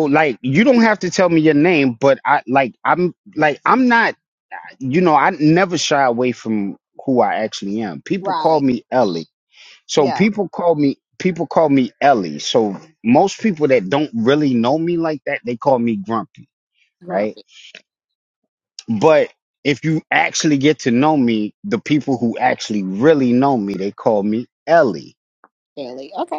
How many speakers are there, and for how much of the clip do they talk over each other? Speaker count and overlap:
2, about 4%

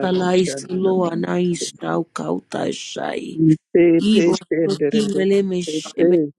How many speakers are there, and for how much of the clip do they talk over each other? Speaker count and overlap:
2, about 52%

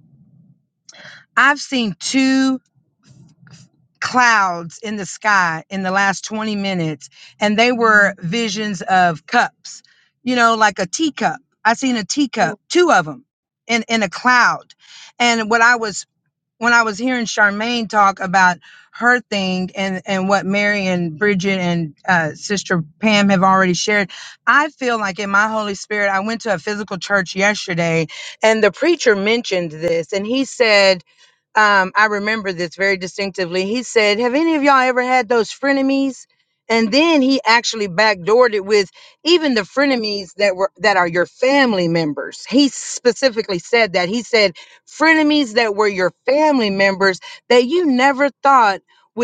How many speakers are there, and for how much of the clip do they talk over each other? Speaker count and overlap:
1, no overlap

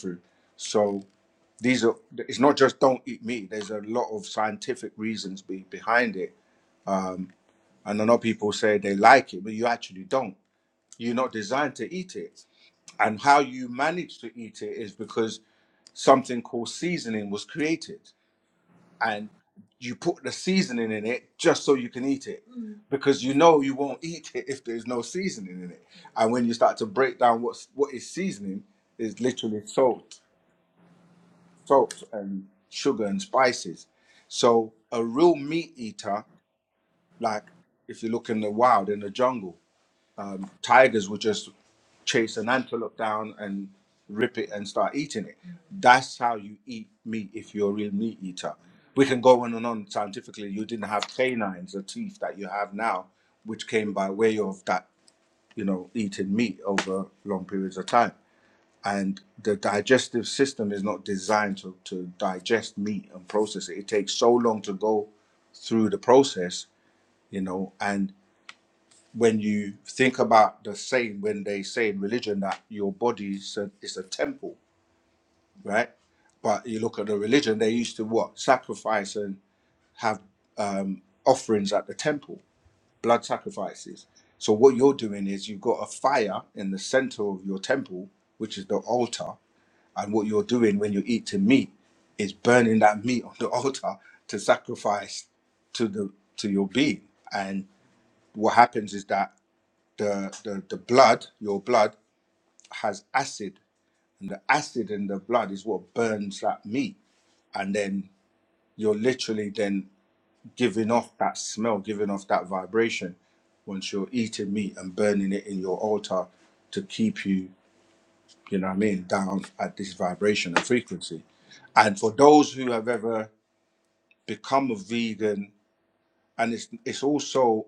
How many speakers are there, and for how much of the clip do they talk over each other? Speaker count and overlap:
1, no overlap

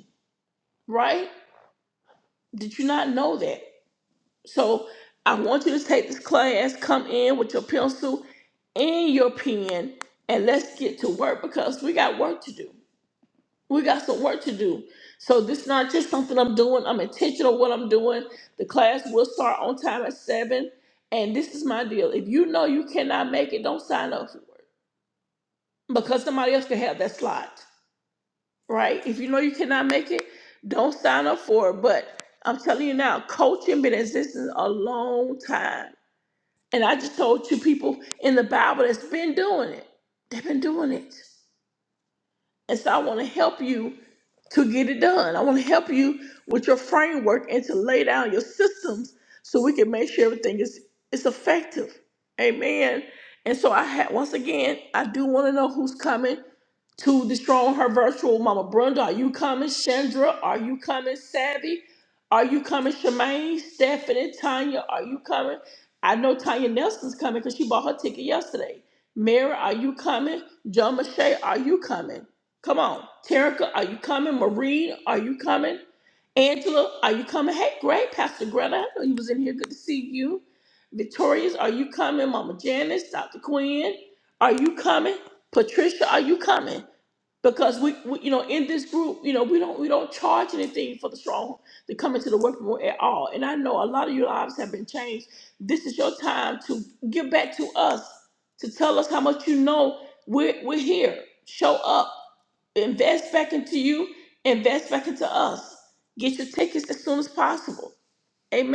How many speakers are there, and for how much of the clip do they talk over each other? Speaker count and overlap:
1, no overlap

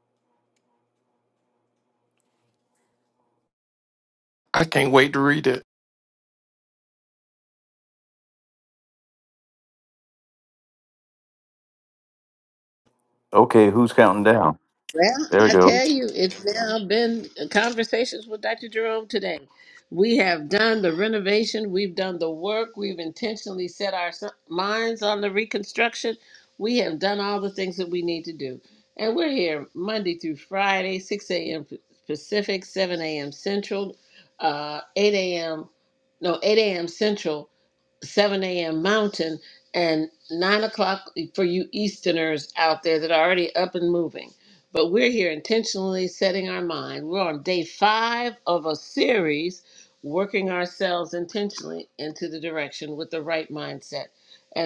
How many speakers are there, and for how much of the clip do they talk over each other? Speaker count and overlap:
3, about 1%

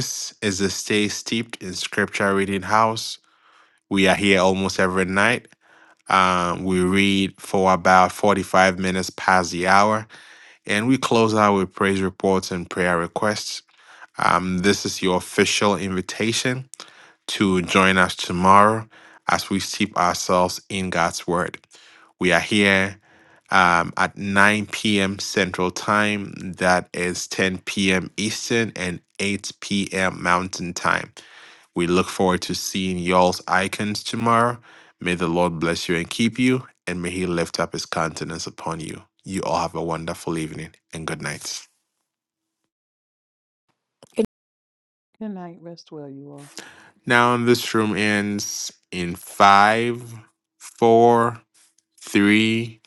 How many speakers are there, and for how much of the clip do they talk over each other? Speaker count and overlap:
2, no overlap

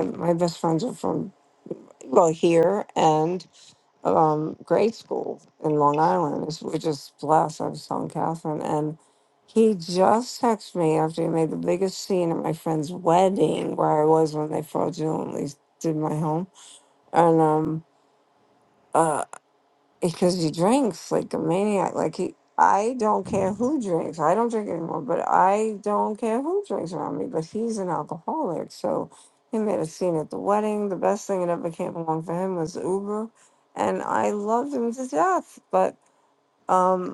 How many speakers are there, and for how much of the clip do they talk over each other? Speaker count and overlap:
1, no overlap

